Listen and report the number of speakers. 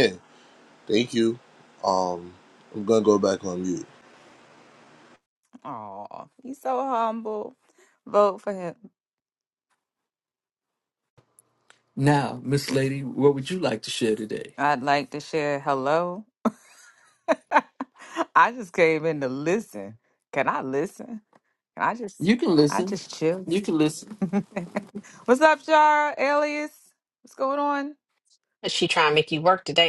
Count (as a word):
four